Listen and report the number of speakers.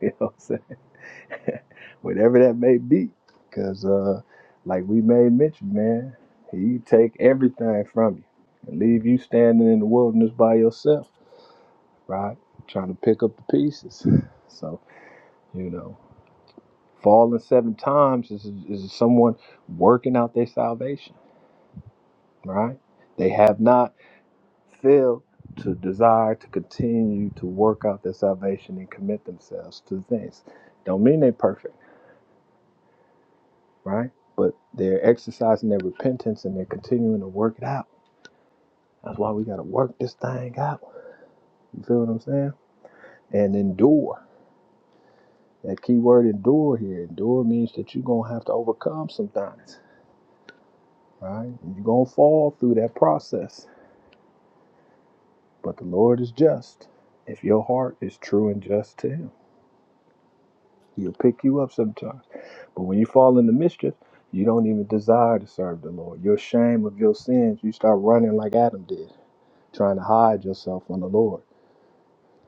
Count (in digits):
1